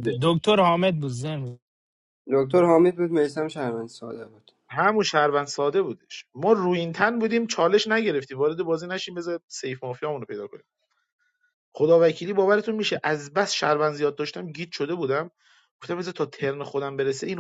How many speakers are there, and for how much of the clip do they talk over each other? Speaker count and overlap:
3, about 1%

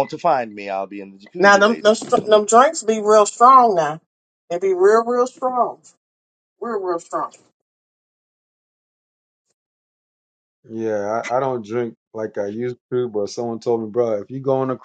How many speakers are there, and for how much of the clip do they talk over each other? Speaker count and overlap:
3, about 7%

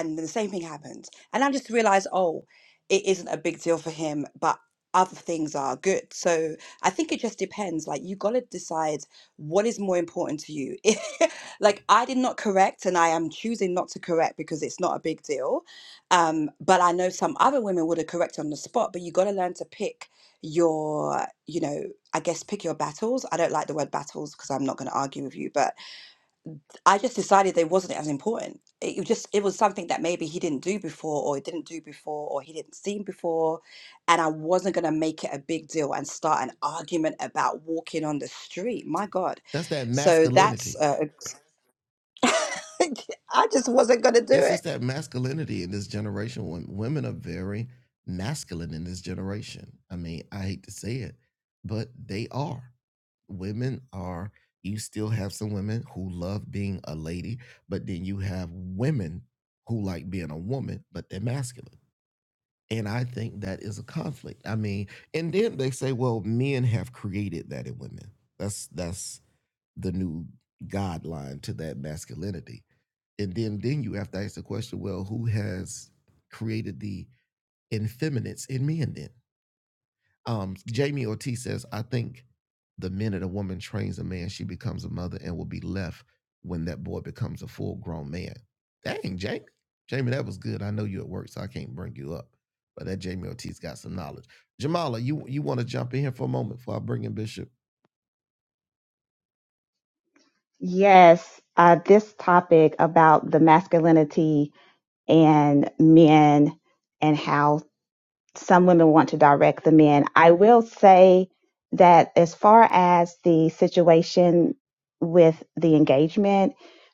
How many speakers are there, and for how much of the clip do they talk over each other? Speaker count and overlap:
3, about 1%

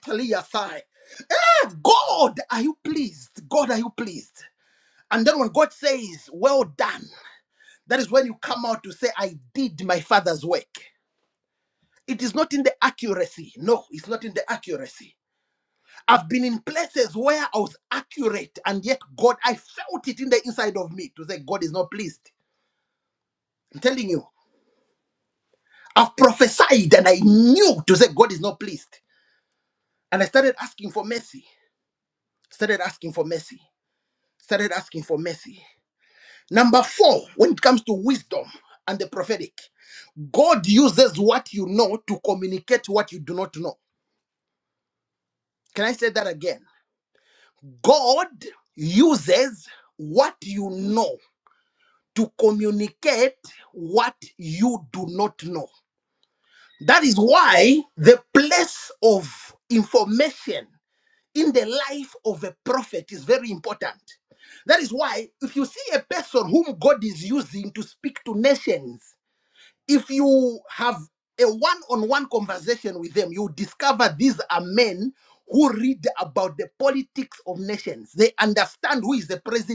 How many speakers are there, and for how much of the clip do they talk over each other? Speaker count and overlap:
1, no overlap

